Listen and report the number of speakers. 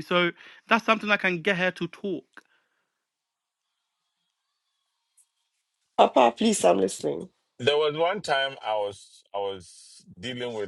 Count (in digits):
3